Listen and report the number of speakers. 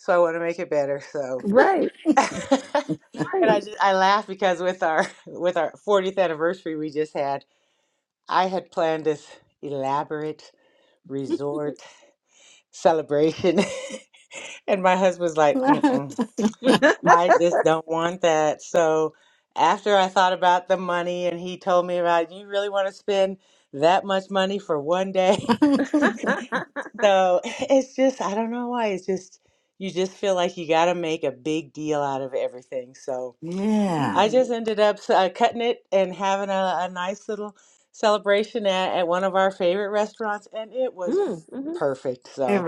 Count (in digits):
3